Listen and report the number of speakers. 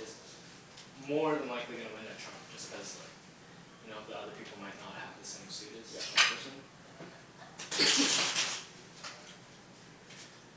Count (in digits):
1